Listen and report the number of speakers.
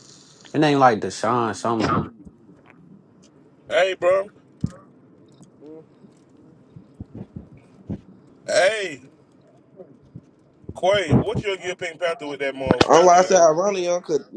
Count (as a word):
three